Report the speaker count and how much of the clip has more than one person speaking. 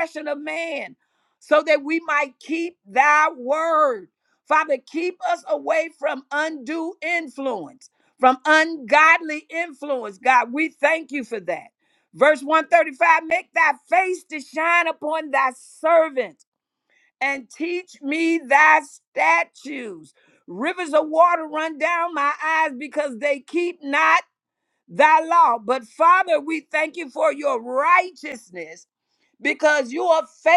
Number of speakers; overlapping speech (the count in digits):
1, no overlap